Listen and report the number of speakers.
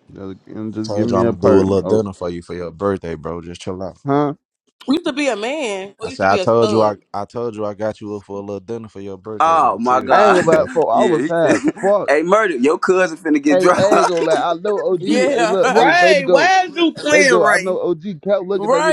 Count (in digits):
5